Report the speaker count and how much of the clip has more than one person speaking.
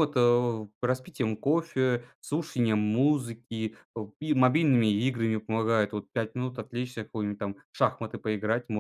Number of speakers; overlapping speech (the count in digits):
1, no overlap